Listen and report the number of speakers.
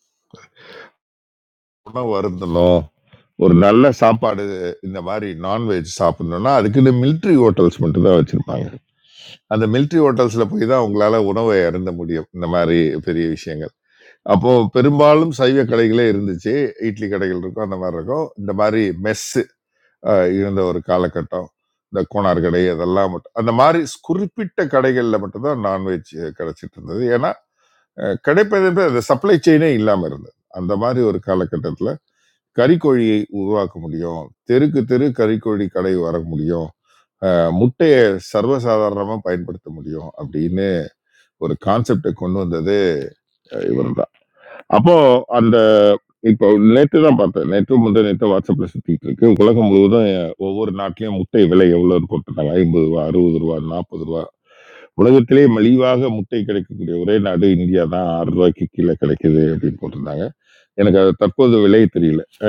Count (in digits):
1